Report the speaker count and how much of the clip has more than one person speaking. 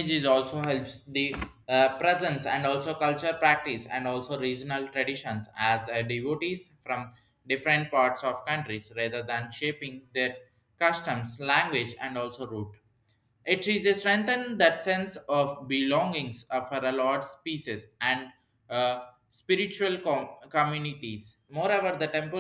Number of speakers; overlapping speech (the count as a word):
one, no overlap